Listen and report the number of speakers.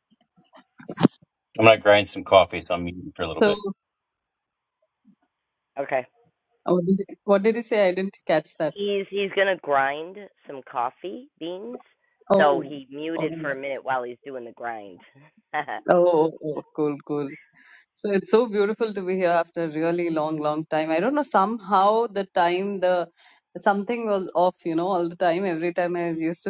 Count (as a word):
three